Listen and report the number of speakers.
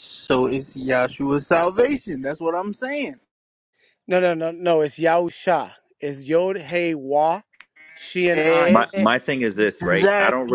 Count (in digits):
3